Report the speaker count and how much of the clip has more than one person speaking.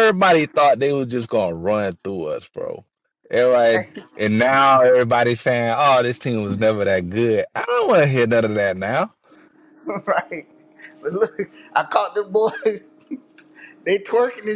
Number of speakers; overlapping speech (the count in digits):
2, no overlap